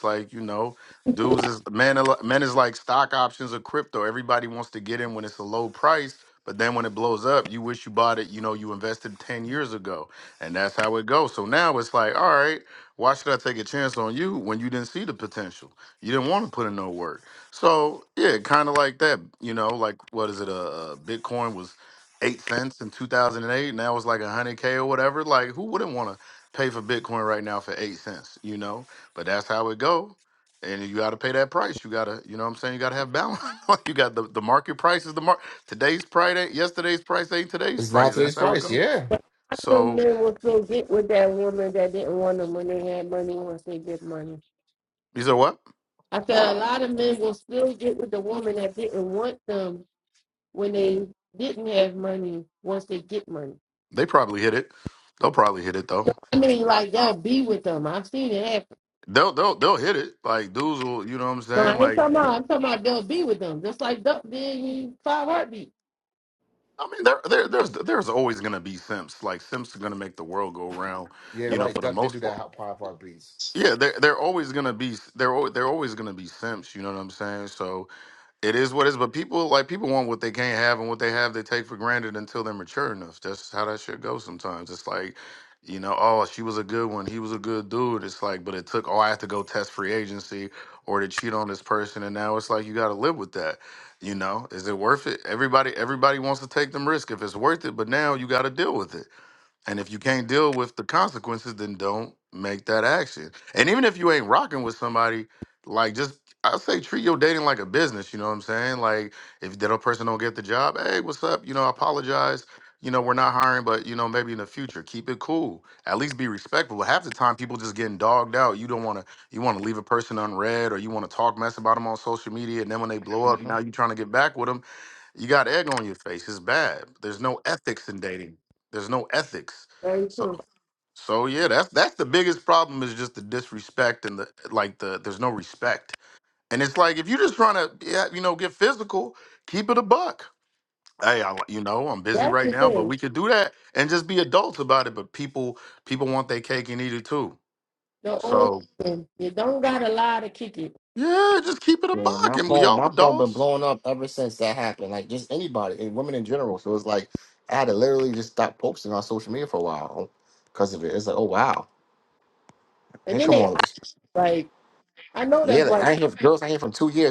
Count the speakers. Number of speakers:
three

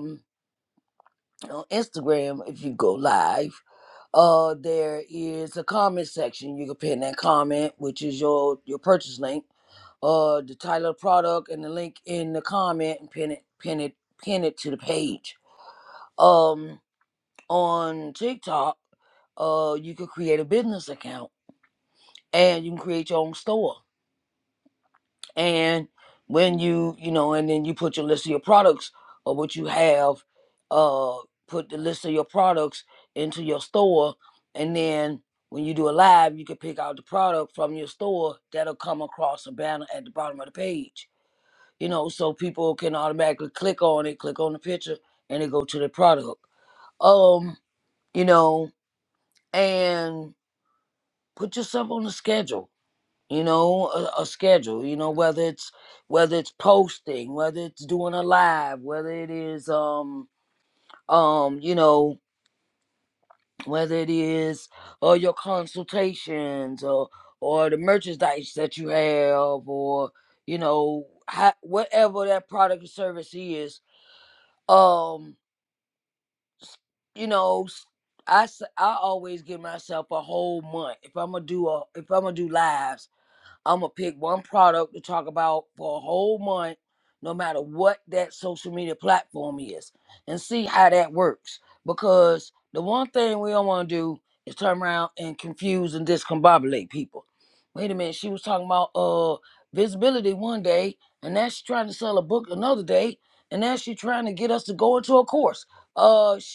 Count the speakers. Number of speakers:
one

